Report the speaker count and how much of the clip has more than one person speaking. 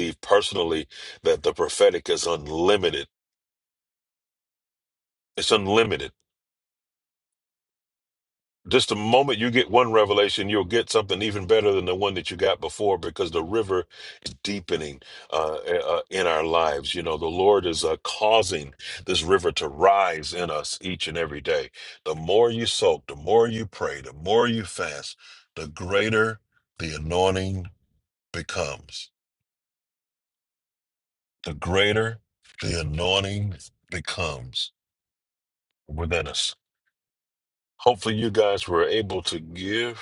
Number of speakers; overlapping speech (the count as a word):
one, no overlap